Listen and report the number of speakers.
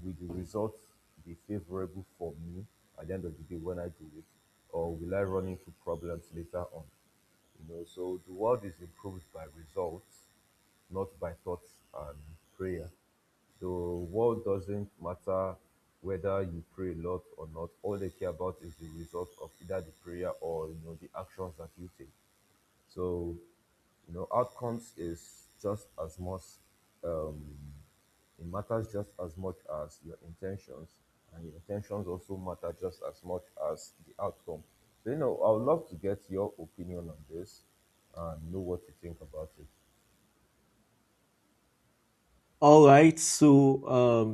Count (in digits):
2